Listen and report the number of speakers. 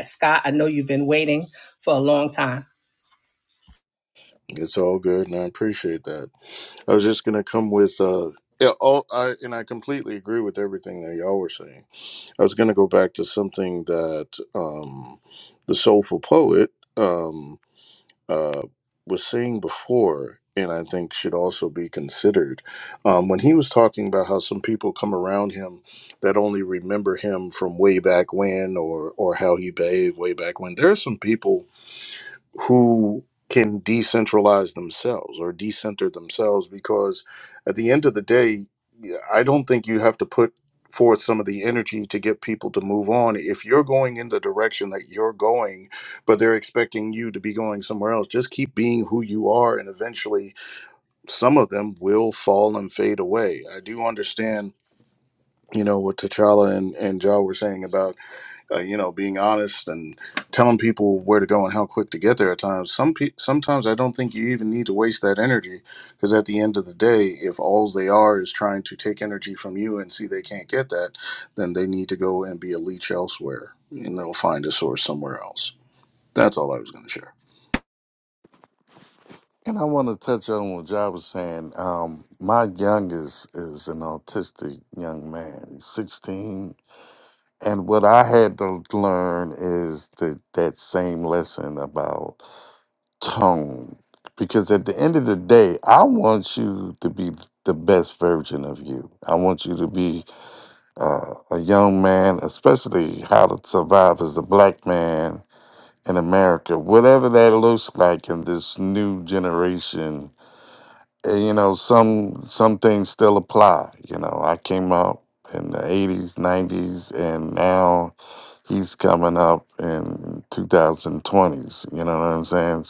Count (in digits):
3